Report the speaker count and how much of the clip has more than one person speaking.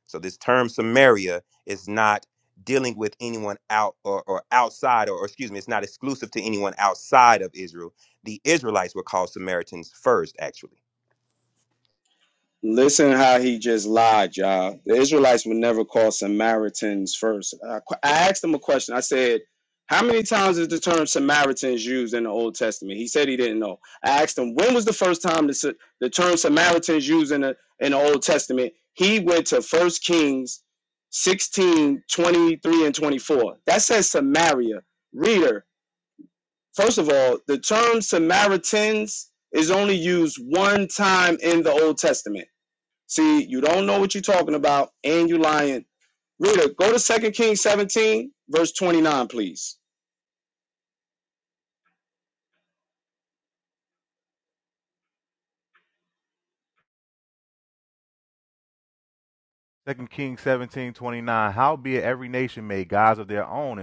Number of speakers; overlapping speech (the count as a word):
three, no overlap